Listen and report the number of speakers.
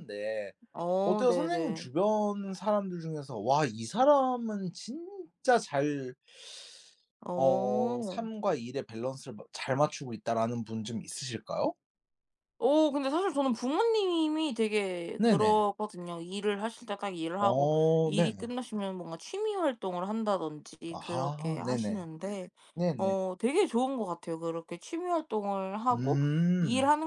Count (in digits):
2